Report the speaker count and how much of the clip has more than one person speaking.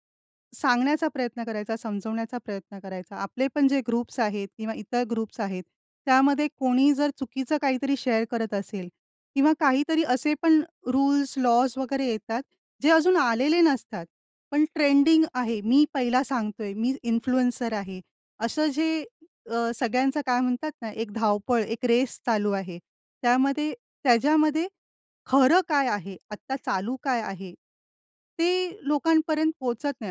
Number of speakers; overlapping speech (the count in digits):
1, no overlap